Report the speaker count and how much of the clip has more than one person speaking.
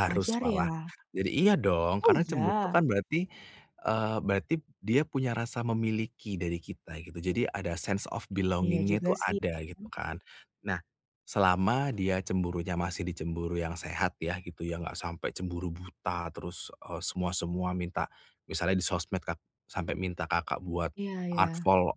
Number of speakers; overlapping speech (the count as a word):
two, about 12%